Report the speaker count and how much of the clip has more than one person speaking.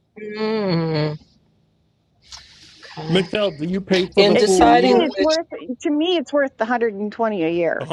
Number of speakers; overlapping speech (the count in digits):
3, about 18%